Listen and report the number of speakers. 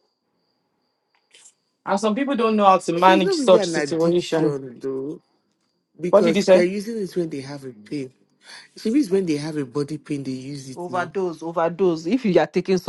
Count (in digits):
3